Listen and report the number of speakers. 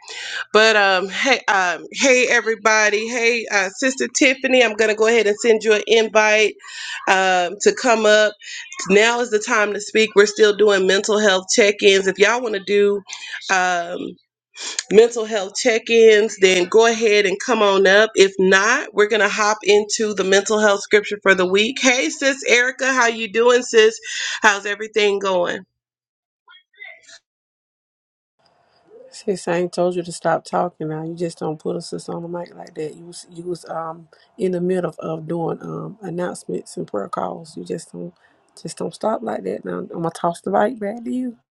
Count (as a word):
two